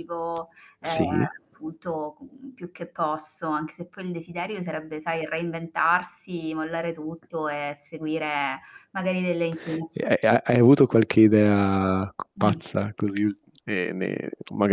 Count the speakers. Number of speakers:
2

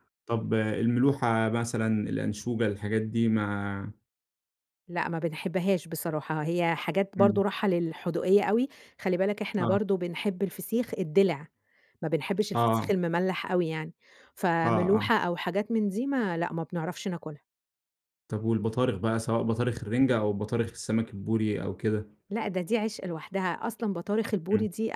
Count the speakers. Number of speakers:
2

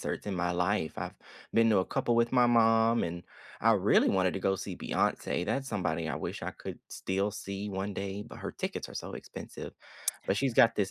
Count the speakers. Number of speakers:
1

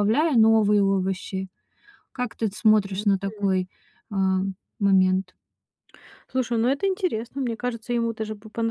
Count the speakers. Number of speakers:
2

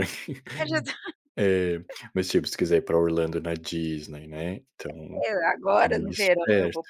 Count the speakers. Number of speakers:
2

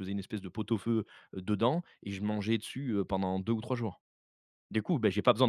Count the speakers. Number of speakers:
1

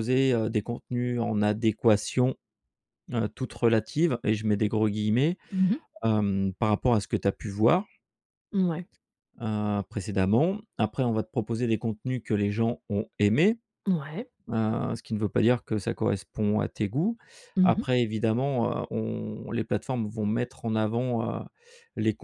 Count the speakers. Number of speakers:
2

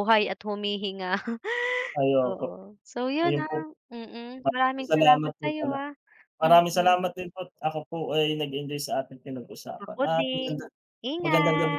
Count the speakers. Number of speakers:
2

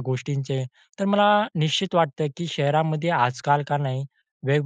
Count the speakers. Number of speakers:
1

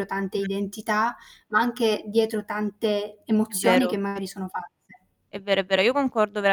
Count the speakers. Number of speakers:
2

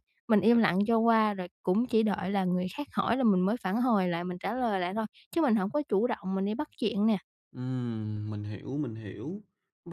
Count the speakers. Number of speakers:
2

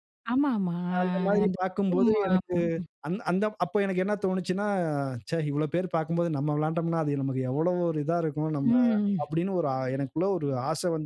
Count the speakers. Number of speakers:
2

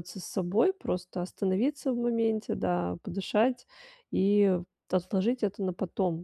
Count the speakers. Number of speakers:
1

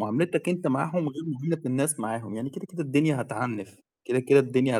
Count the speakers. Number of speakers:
1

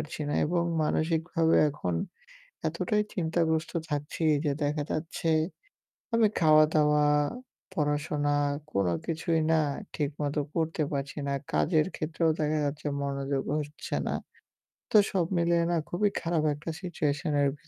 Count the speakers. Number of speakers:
1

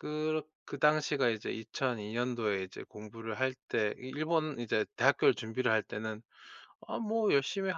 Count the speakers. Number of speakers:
1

